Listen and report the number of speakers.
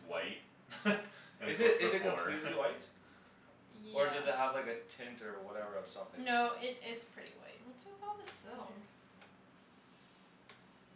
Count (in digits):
4